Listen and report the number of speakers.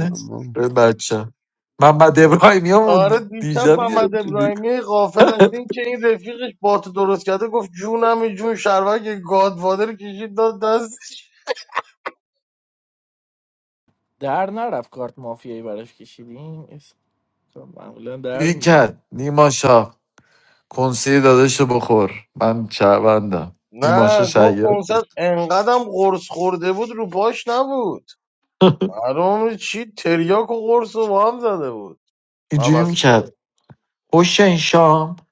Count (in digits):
3